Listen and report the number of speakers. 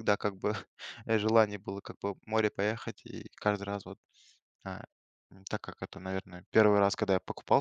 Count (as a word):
one